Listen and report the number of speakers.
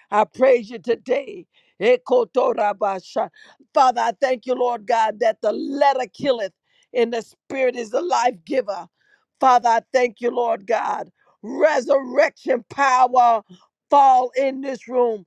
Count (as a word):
one